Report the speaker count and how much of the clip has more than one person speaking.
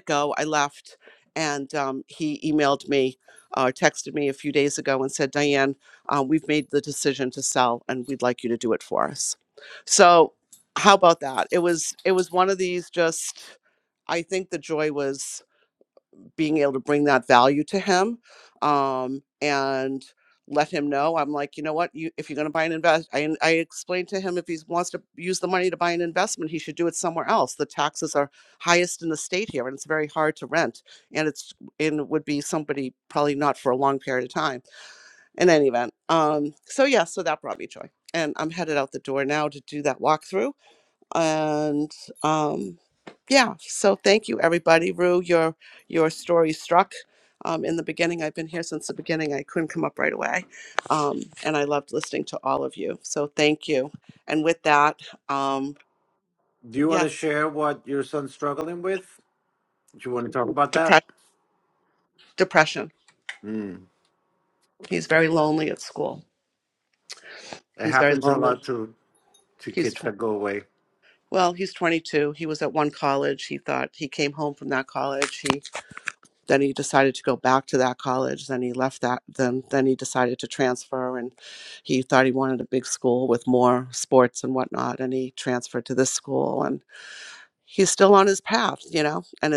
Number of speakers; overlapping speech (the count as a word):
two, about 2%